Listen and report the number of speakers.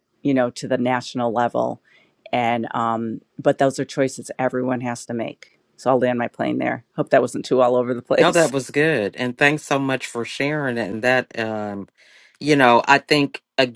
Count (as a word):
two